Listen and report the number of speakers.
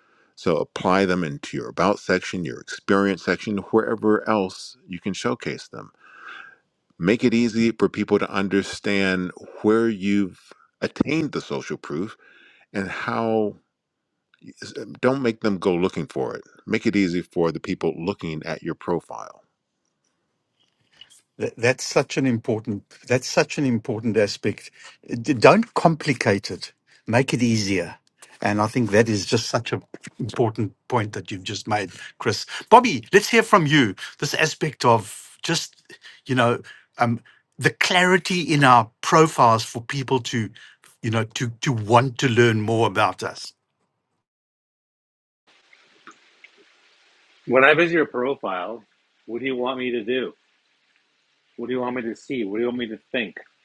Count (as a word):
three